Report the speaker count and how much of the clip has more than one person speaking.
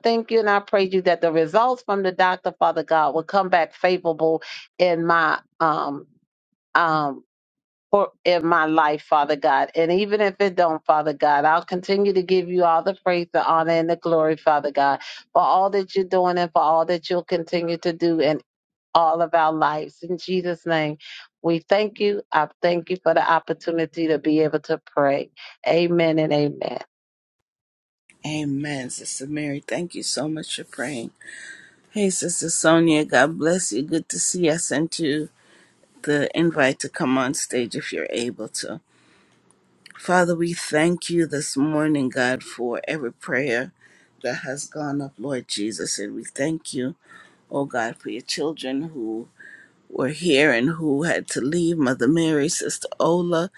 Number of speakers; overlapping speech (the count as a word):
two, no overlap